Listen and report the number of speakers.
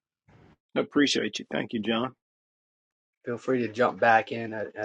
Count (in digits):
2